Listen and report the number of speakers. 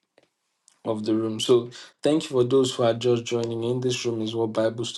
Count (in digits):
1